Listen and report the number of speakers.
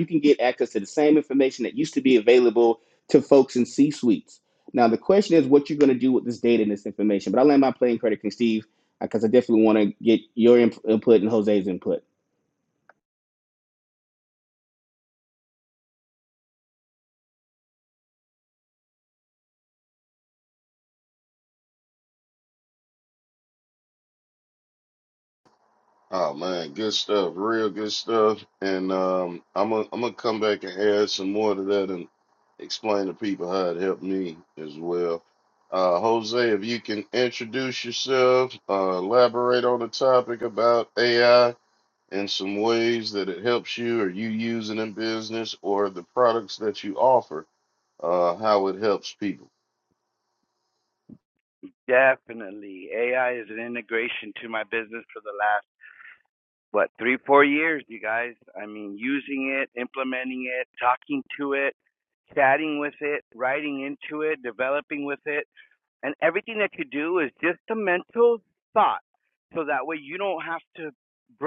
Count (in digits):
3